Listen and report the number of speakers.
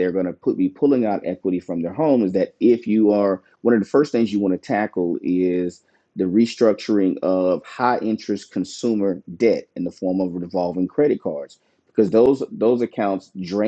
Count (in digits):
1